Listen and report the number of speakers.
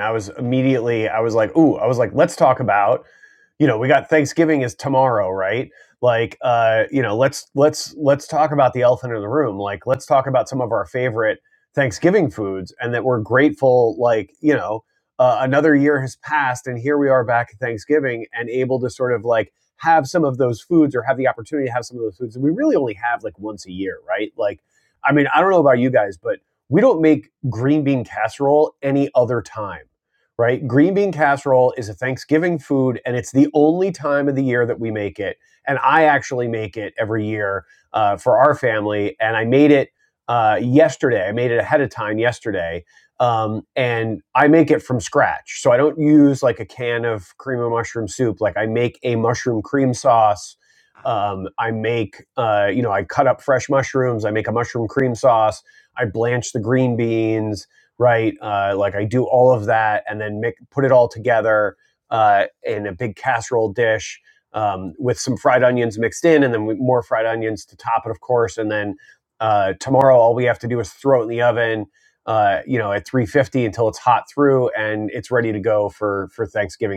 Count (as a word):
one